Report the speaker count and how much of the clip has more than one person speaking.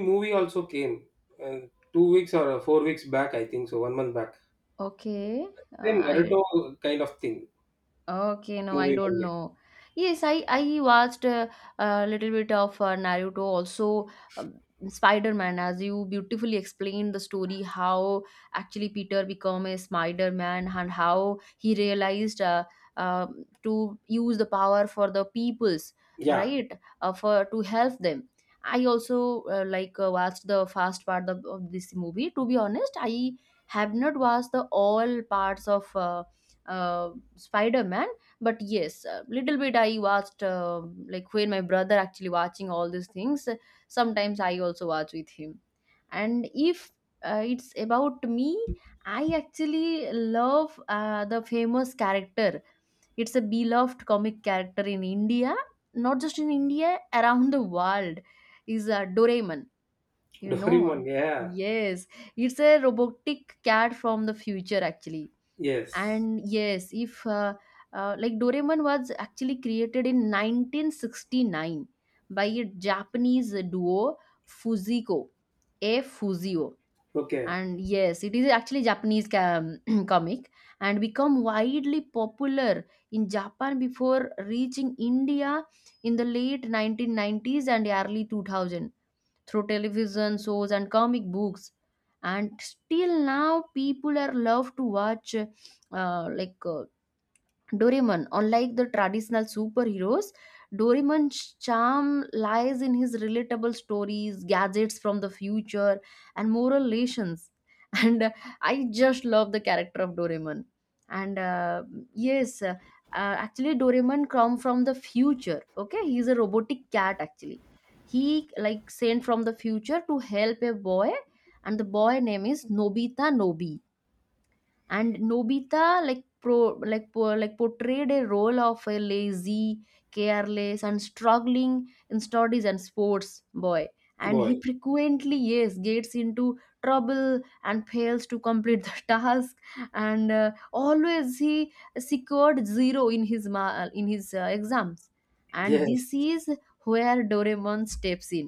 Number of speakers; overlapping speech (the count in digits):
2, about 2%